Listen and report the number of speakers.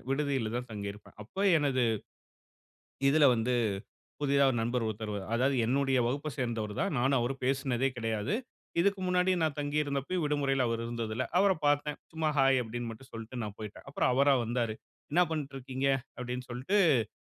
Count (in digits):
1